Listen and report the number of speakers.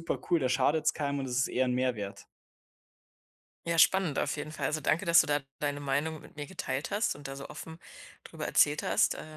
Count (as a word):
two